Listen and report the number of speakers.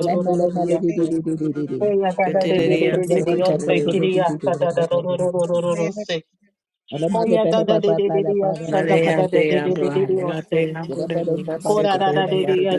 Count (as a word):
three